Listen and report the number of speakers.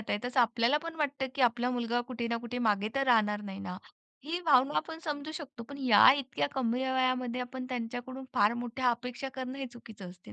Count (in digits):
1